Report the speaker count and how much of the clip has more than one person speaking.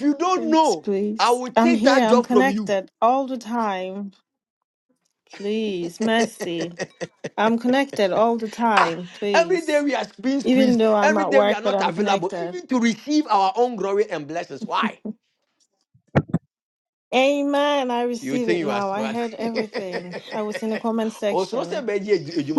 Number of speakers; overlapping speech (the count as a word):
two, about 27%